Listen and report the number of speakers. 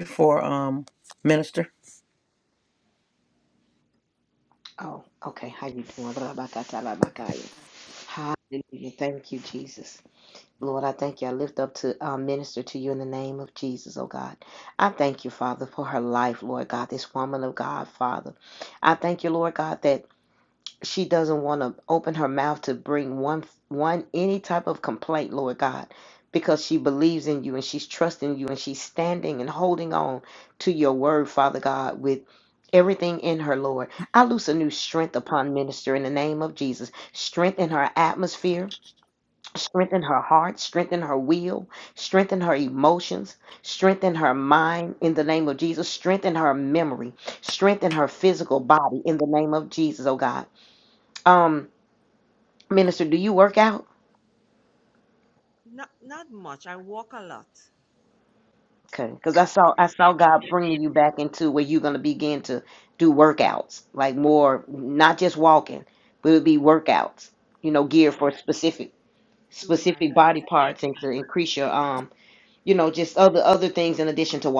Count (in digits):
3